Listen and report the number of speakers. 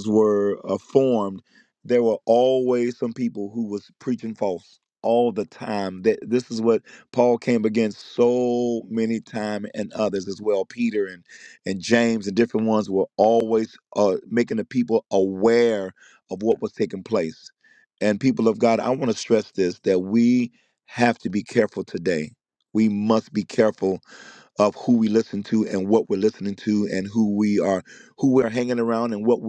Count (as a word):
one